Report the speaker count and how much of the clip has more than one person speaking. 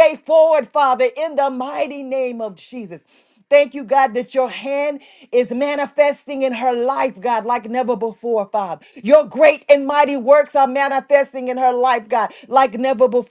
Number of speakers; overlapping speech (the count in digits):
1, no overlap